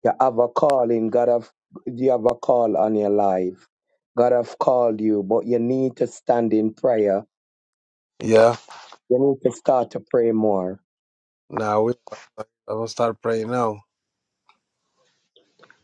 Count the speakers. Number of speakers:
2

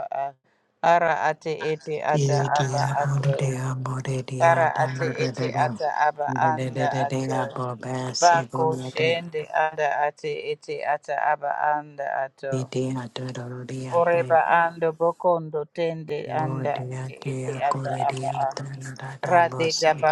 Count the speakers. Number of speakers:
2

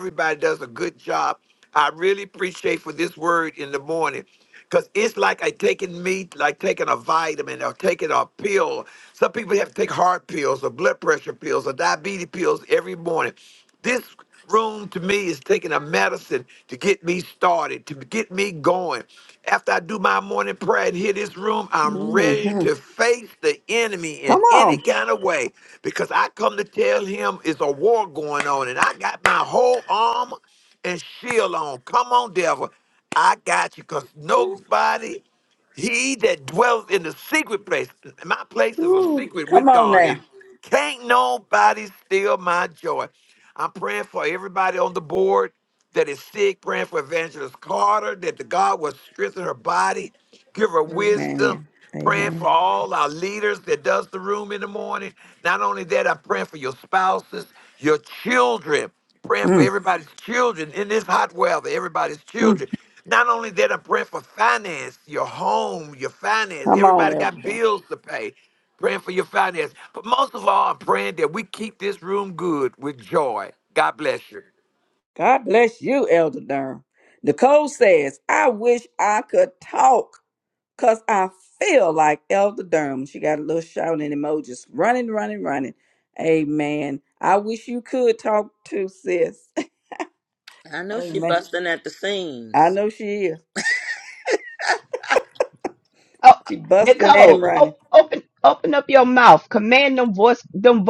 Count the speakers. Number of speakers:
4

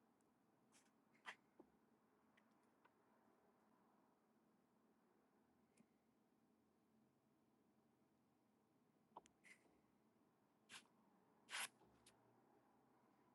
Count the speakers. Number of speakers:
0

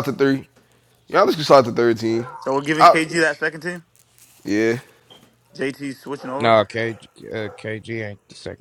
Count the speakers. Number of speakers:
3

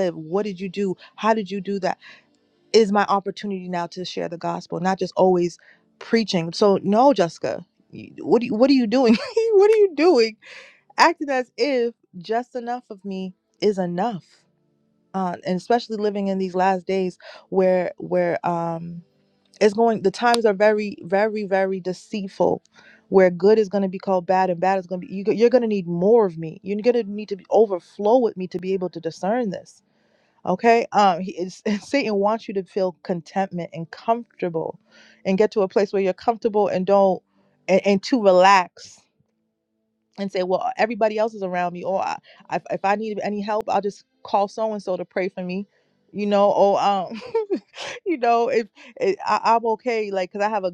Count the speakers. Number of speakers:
1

